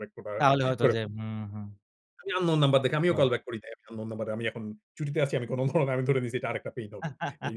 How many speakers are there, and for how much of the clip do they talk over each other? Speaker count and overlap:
2, about 7%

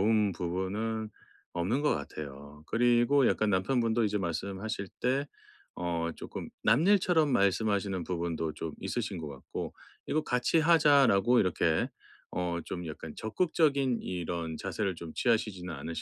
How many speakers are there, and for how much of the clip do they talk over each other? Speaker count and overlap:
1, no overlap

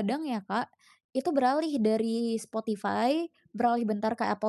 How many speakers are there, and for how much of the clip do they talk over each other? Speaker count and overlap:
1, no overlap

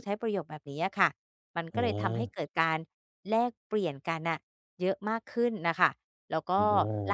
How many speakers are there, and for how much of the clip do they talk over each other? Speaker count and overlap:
2, about 9%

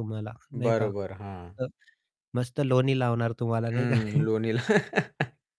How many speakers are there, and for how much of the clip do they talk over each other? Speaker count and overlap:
2, about 12%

